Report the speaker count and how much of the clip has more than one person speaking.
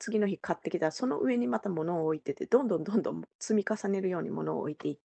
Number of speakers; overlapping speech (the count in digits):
1, no overlap